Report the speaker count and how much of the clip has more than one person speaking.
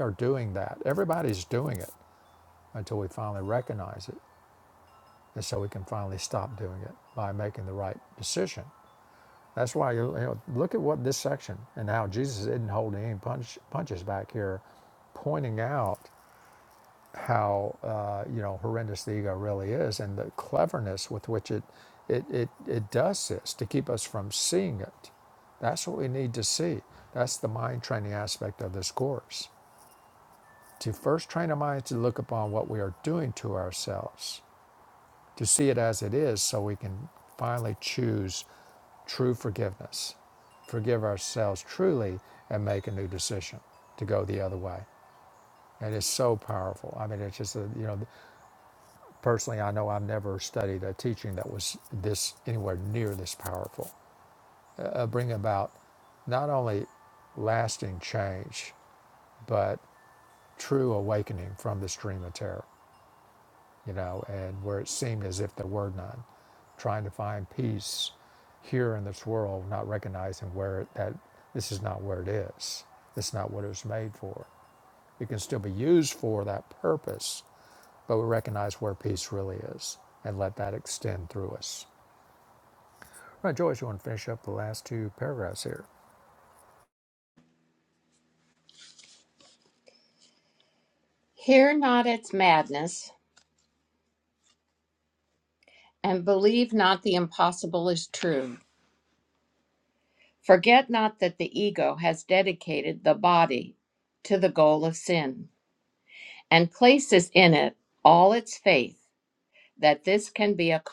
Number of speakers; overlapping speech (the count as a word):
two, no overlap